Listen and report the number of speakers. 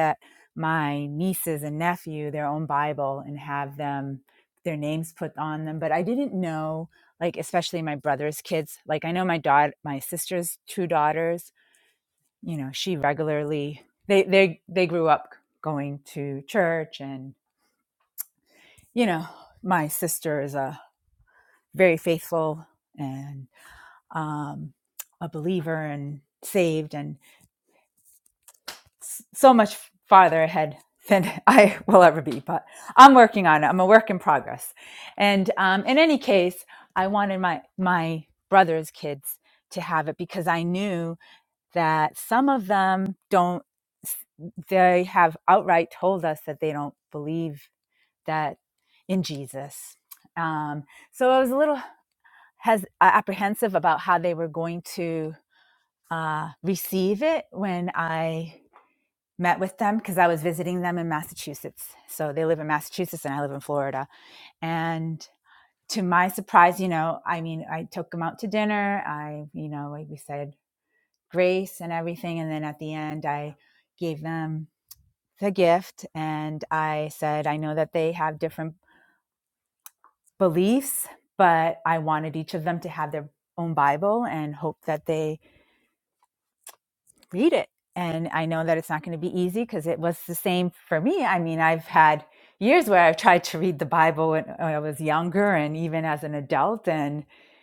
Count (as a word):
one